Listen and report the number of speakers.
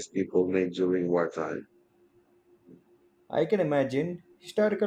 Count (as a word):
two